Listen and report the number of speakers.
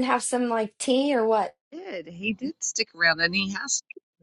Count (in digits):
2